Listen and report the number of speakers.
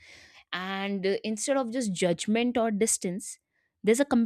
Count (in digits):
1